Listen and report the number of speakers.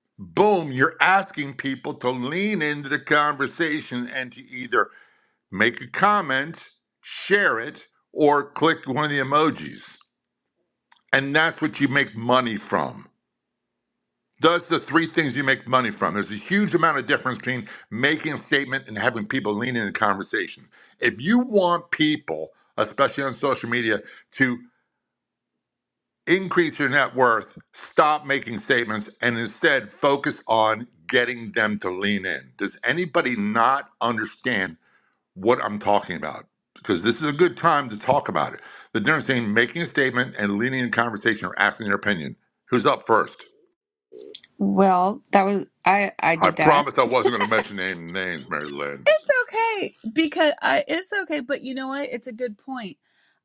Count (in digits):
2